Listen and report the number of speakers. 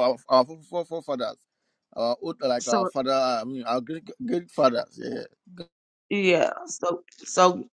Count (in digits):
2